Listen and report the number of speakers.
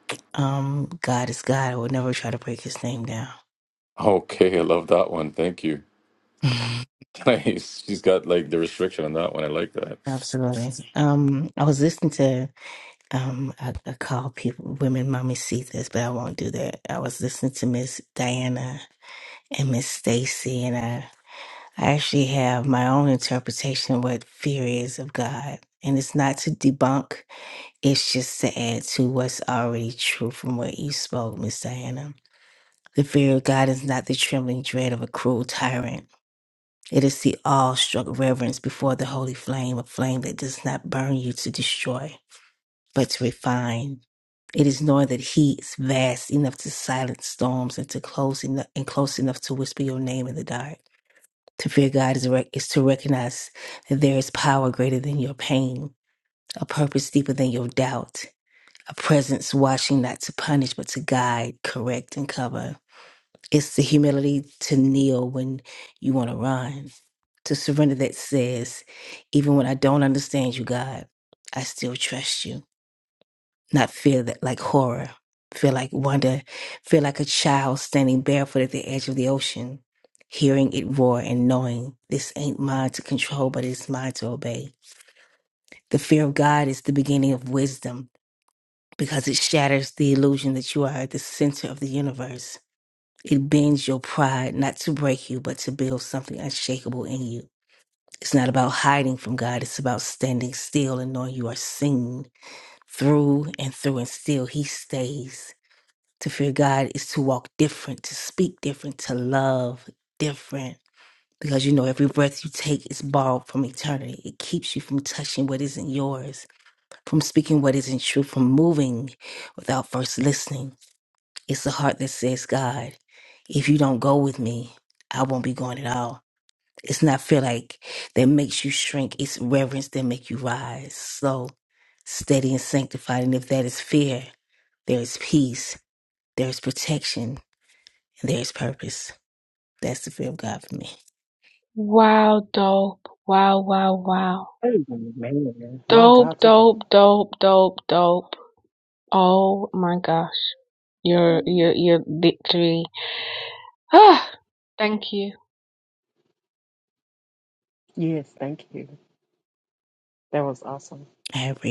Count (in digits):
4